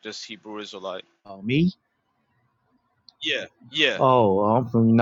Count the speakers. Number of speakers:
2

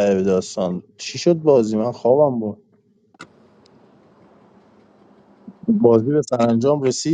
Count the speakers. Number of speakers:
1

